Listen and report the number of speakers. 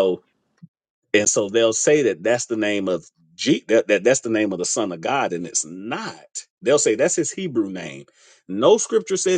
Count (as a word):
one